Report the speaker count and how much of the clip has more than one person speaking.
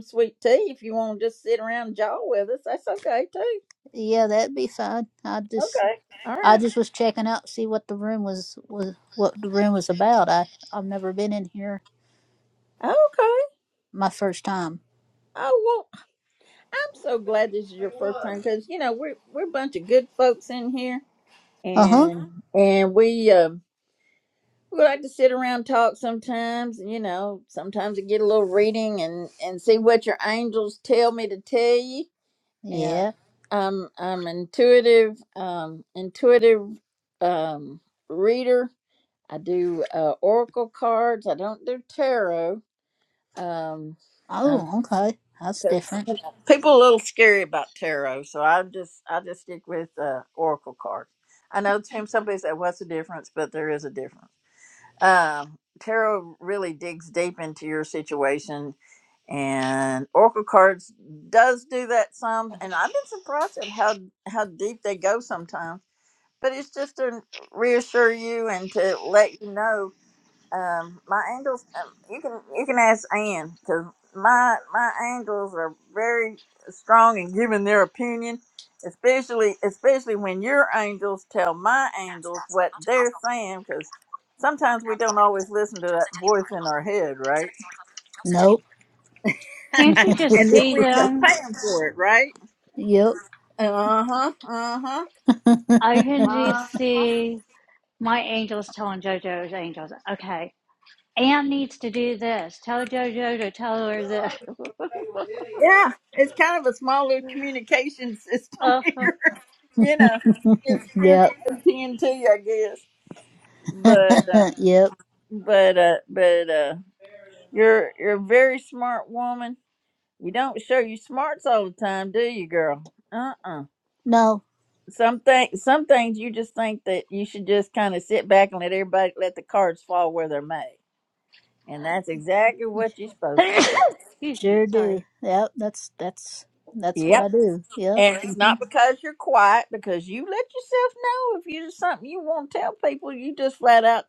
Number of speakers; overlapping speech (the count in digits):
3, about 4%